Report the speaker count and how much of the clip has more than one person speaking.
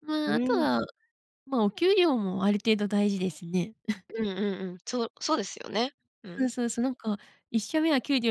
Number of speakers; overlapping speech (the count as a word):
two, about 6%